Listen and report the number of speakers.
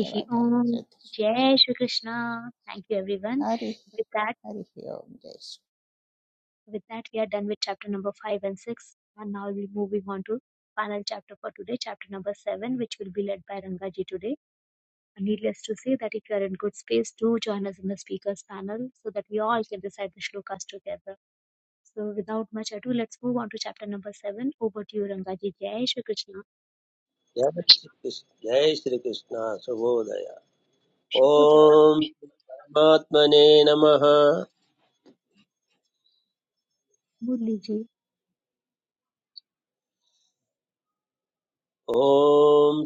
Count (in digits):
3